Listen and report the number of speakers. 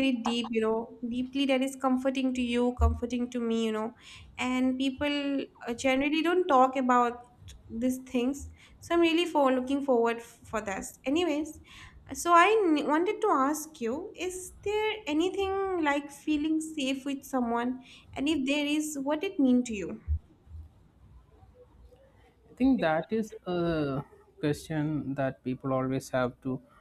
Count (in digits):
2